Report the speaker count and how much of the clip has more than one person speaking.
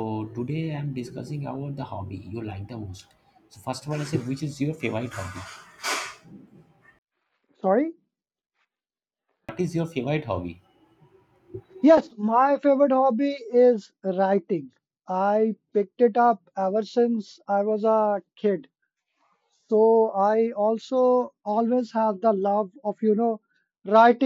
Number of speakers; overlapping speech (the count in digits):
2, no overlap